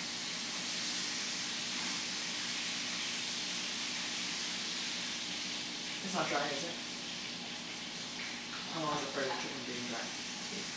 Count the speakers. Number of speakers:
1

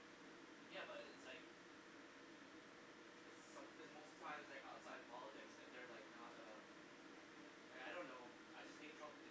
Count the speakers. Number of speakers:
1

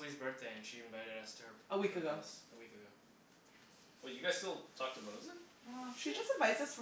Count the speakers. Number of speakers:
3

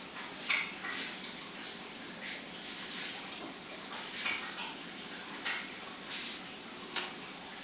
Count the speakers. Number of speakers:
0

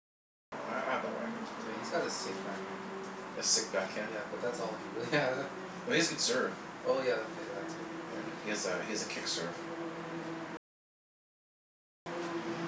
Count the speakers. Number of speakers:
2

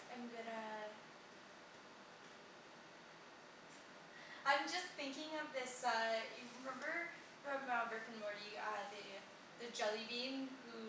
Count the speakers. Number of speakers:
1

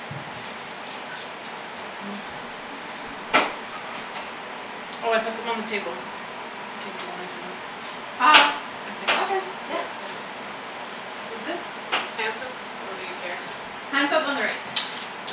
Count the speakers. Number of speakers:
2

